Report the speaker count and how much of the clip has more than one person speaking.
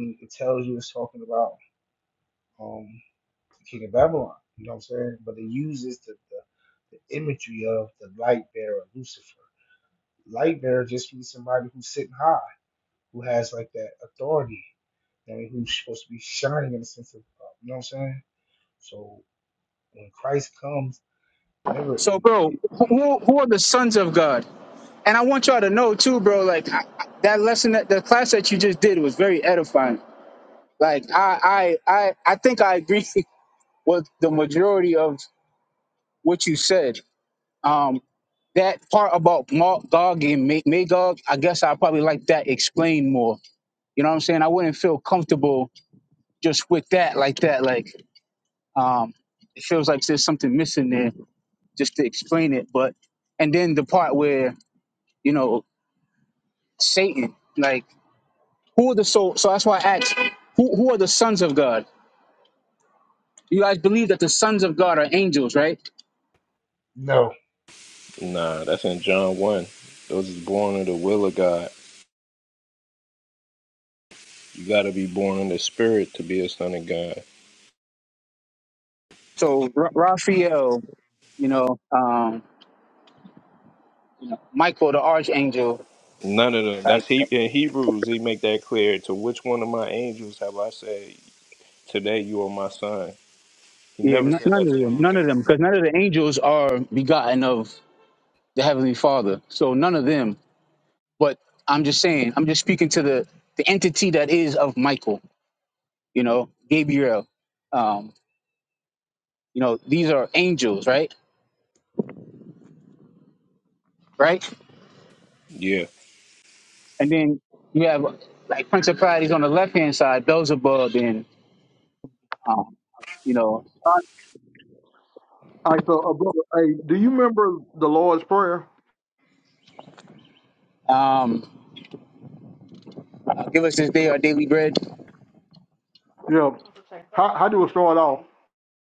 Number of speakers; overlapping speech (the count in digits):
4, about 1%